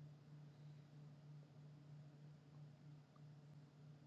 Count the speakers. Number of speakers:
0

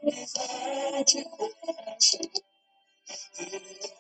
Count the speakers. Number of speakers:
0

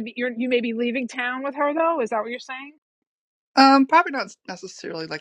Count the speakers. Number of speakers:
2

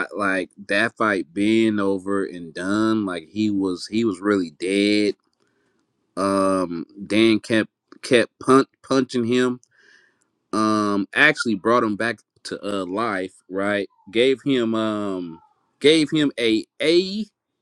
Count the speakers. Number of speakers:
1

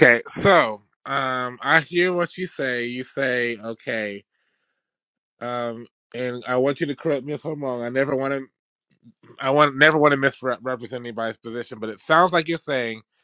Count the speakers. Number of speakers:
1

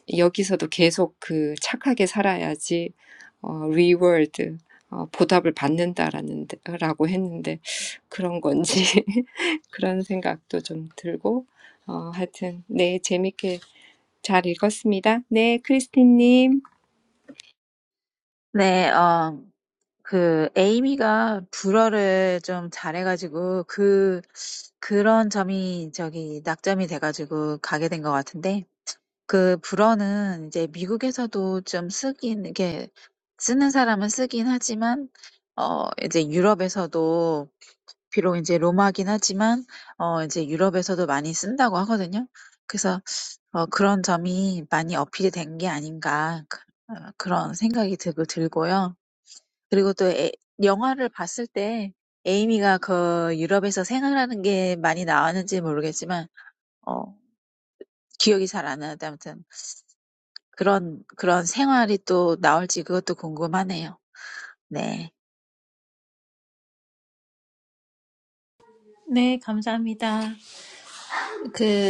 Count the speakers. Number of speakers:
3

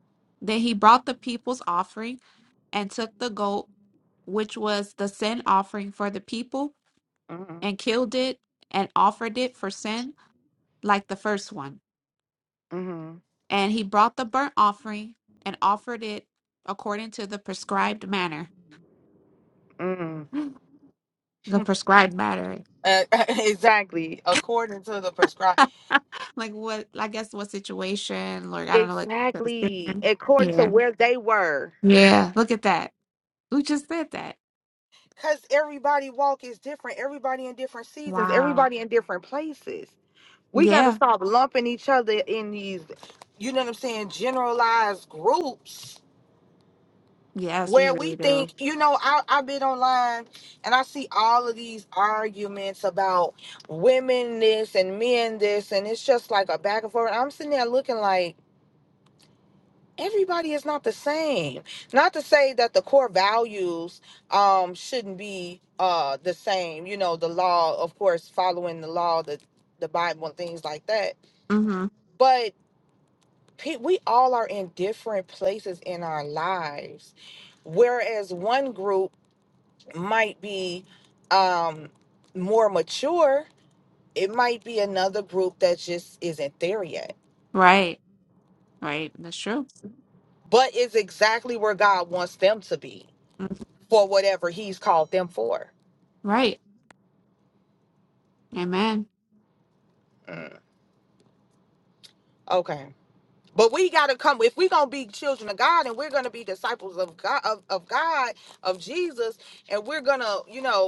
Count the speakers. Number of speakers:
2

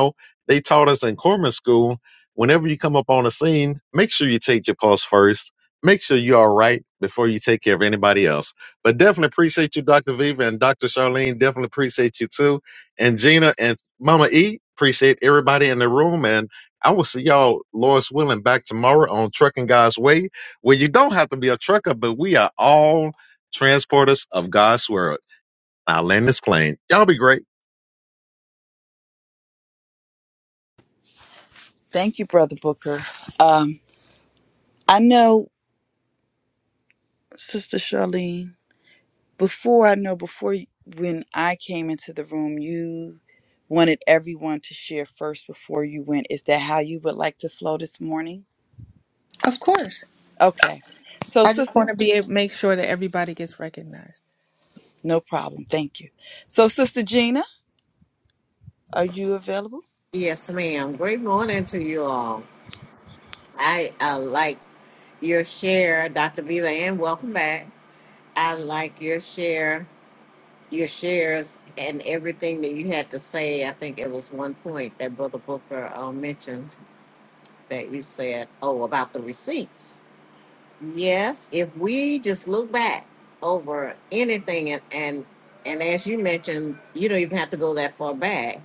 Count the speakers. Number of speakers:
4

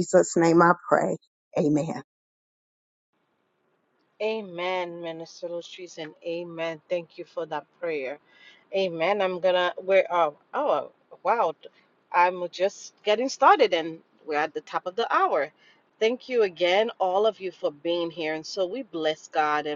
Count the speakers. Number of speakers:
2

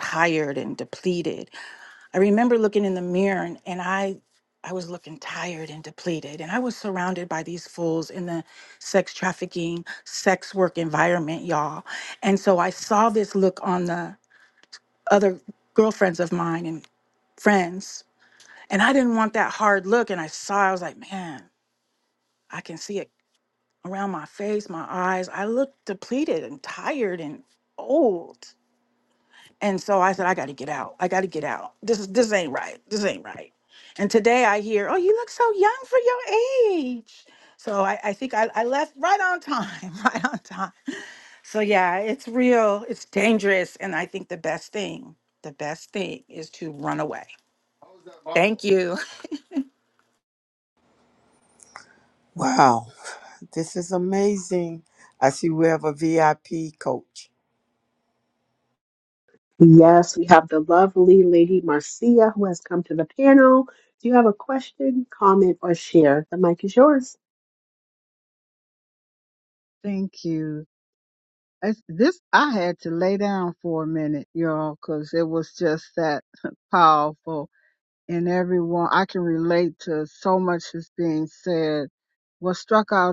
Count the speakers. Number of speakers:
4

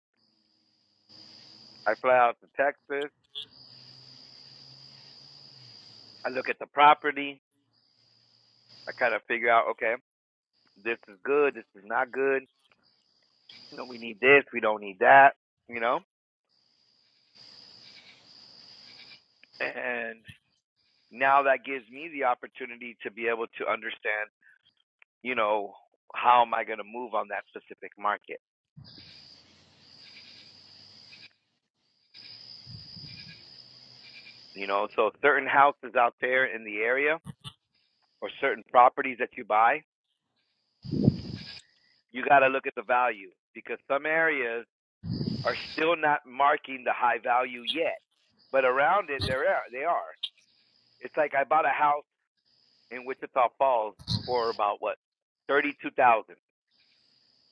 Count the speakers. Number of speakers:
1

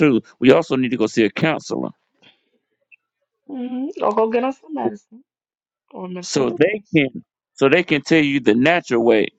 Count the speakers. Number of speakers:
2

